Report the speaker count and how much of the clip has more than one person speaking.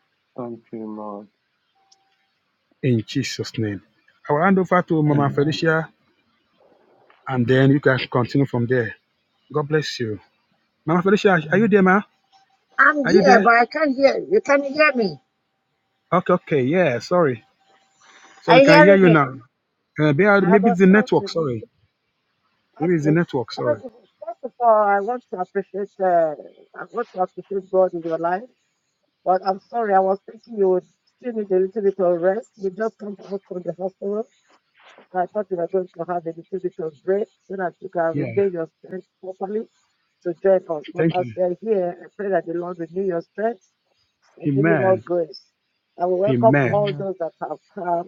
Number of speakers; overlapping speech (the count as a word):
three, about 10%